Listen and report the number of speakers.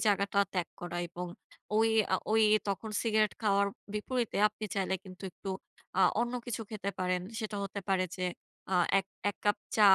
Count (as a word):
one